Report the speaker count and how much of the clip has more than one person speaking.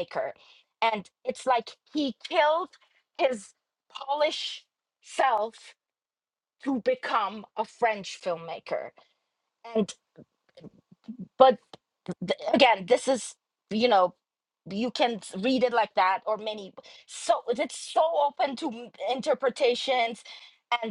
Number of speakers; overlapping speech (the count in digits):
1, no overlap